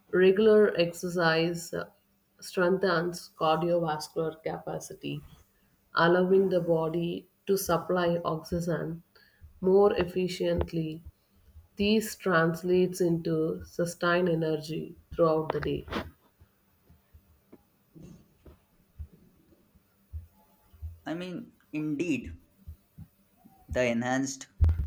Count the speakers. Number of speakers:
2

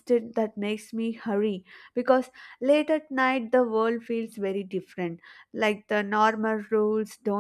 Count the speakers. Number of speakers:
1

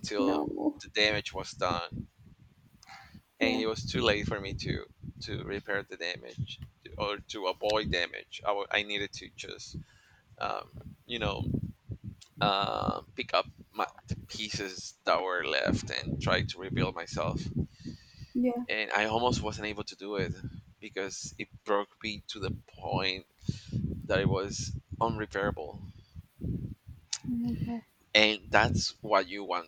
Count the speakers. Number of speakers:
2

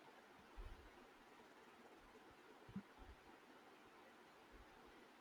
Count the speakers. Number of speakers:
0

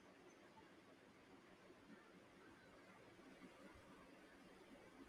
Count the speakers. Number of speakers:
0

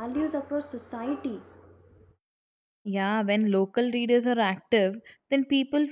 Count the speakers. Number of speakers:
2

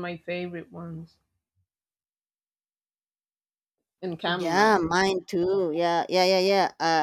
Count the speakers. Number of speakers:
2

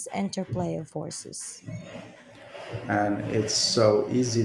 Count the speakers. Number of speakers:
2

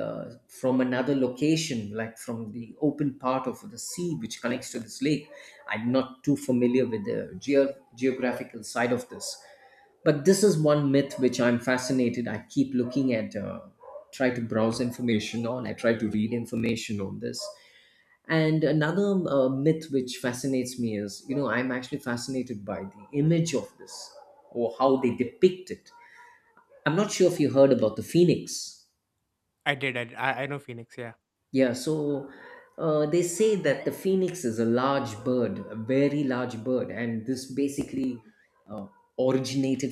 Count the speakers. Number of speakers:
2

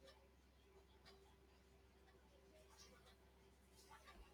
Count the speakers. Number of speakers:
0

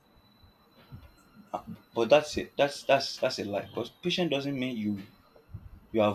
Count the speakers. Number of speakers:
1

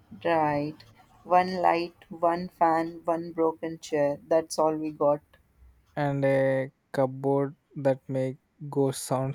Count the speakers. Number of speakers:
2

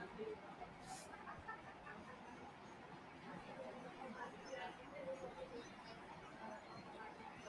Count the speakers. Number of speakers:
0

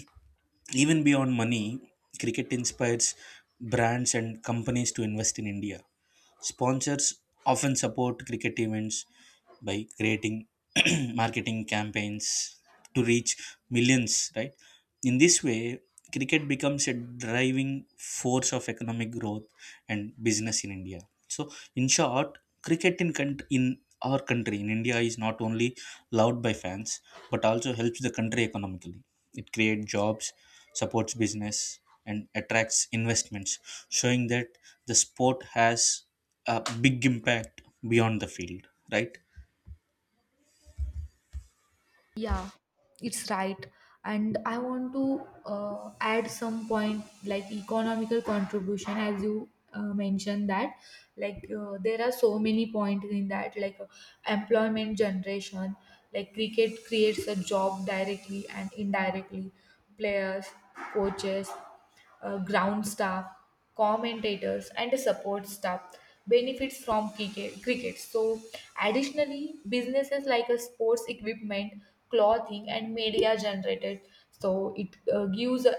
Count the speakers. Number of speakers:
2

